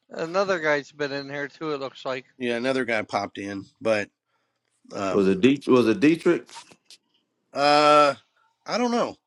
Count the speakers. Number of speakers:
3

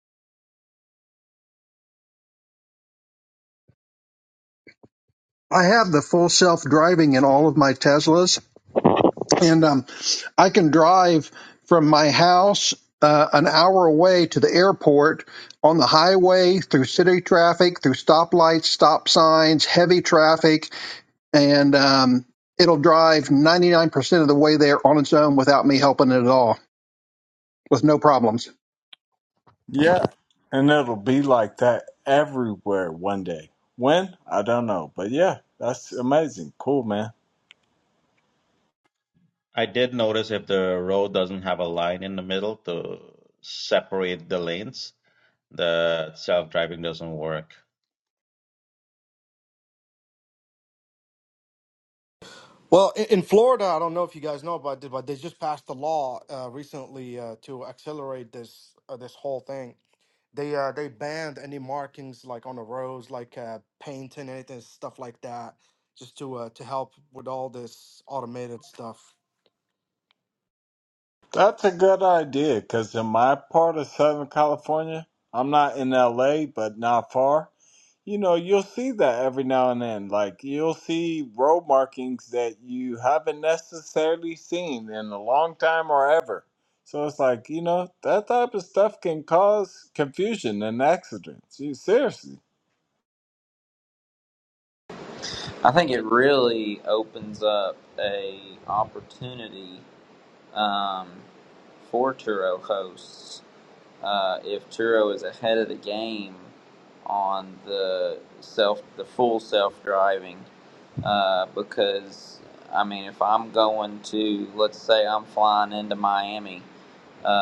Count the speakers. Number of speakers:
5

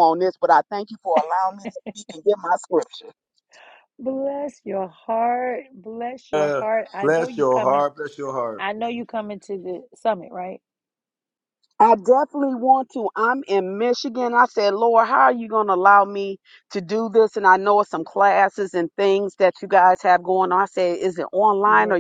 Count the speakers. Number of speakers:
3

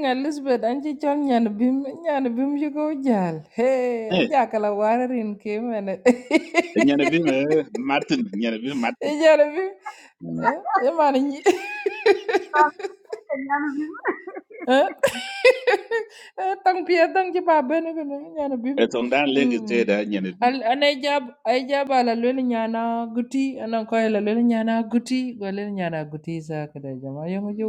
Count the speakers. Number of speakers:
3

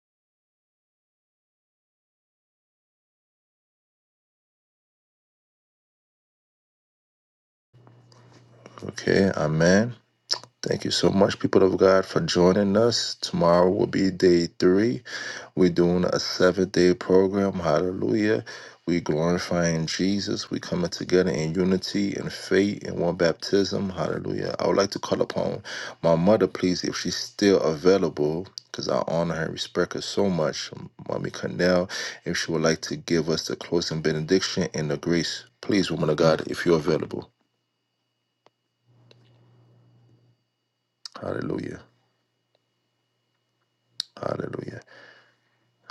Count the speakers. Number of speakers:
1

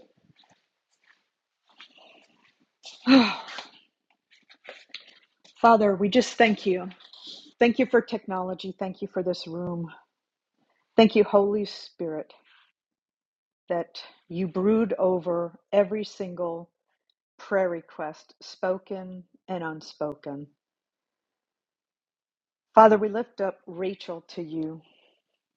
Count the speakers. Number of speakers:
1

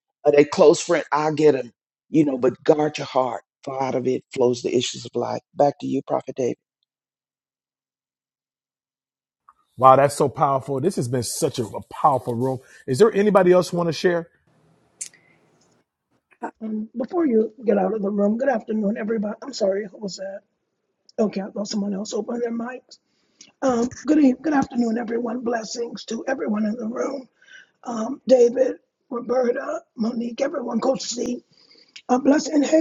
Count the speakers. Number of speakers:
3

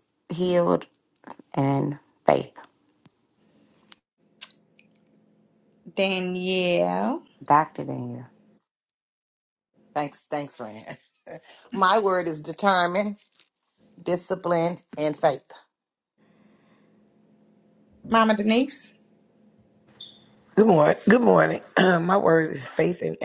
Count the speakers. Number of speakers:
4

